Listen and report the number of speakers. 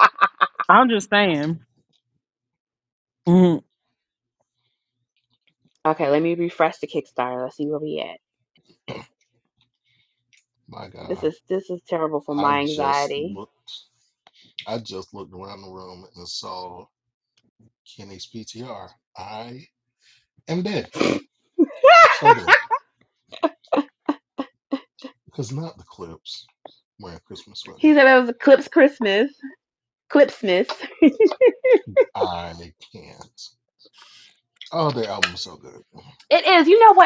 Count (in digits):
3